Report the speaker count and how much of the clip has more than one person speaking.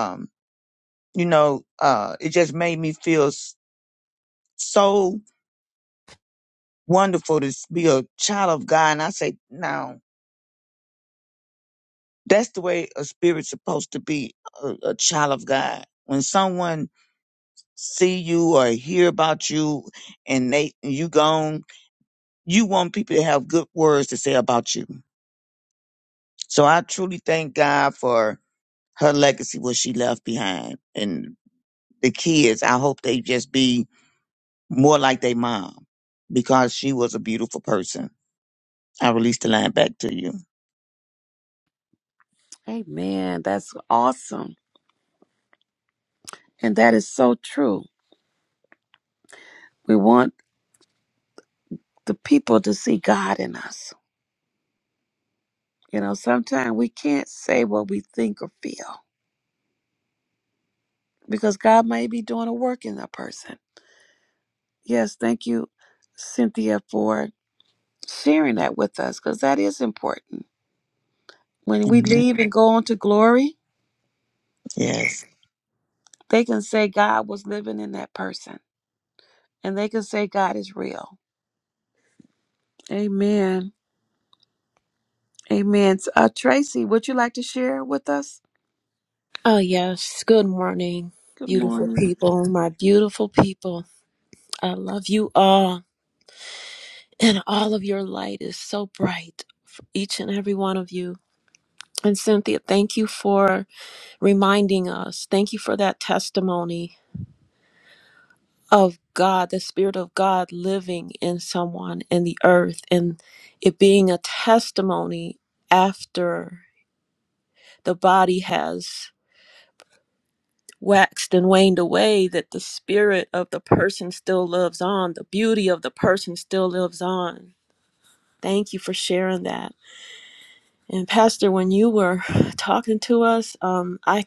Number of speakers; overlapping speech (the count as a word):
three, about 1%